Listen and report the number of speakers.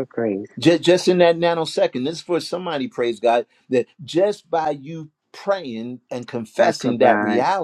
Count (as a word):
two